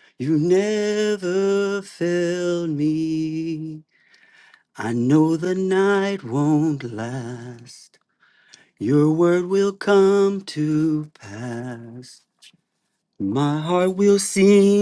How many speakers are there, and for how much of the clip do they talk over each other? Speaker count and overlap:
1, no overlap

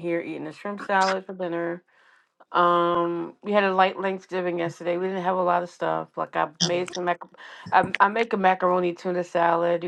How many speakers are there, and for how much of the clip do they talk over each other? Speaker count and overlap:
1, no overlap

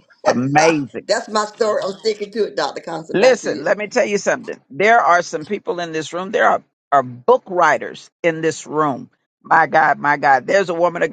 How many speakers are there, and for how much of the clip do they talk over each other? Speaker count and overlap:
2, about 5%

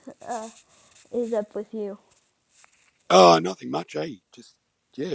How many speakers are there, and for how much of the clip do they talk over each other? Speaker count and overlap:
2, no overlap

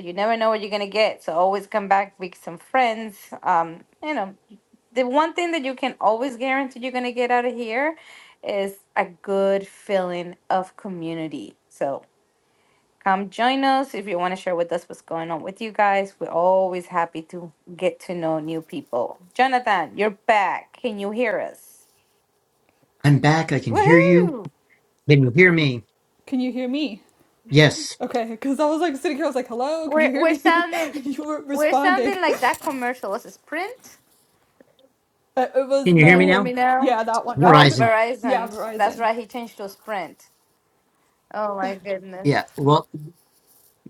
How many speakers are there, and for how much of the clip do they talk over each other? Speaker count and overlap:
3, about 11%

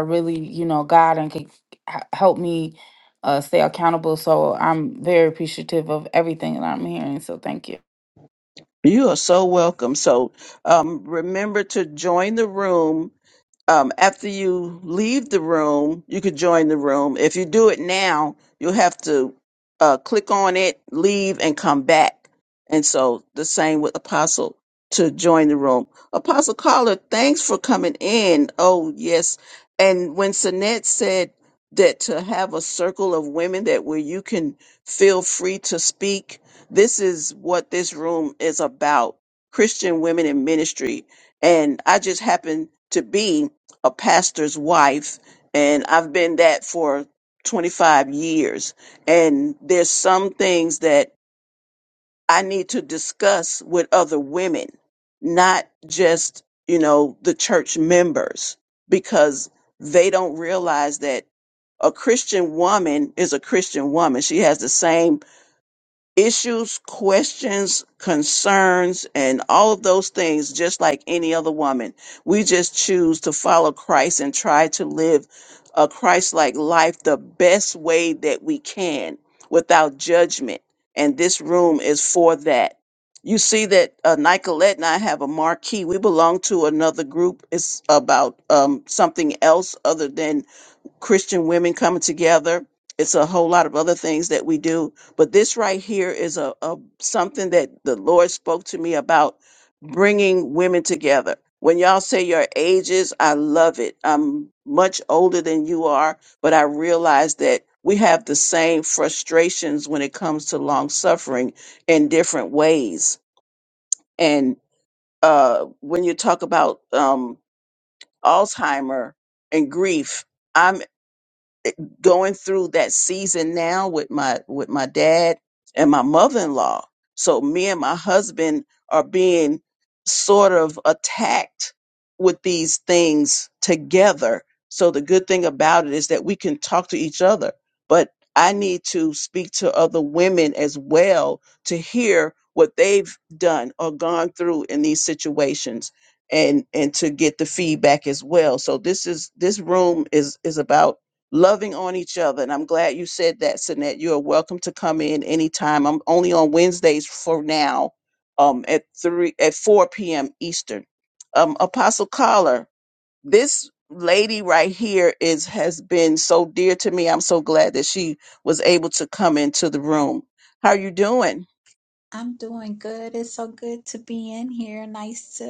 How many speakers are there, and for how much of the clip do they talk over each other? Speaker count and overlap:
3, no overlap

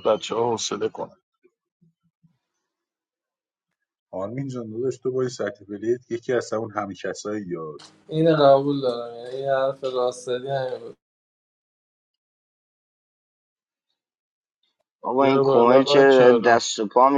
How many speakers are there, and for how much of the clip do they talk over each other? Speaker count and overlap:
4, about 8%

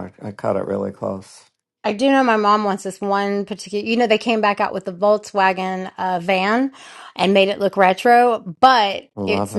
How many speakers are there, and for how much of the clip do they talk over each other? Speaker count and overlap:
2, about 5%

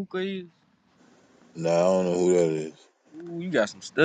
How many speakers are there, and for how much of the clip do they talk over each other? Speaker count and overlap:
2, no overlap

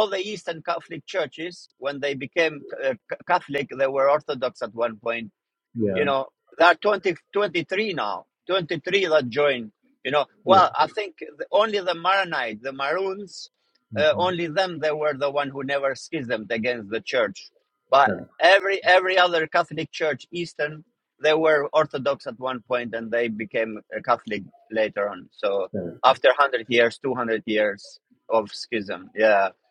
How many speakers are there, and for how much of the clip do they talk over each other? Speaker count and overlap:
2, about 3%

